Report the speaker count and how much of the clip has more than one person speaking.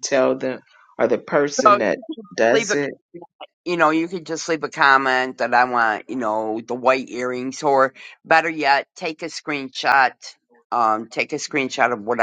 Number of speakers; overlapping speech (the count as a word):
two, about 4%